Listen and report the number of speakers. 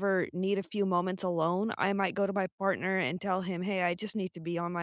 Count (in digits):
1